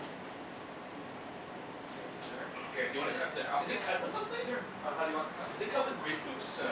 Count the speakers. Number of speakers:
3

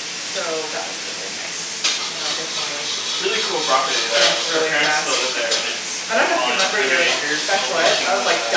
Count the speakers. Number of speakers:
2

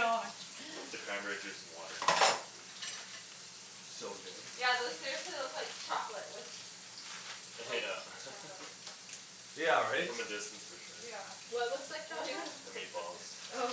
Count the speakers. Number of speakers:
4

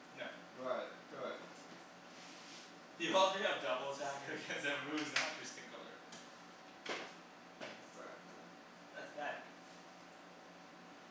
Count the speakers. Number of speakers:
2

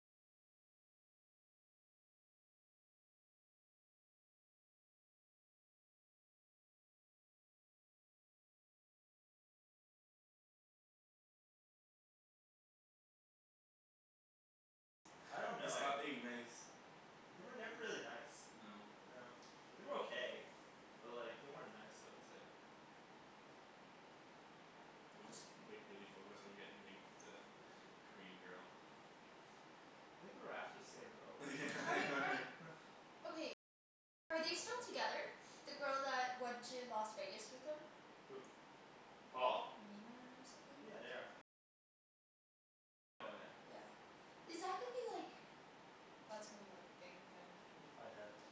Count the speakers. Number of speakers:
3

